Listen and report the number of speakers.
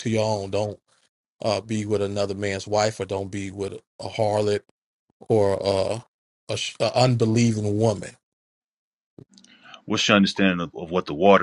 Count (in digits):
2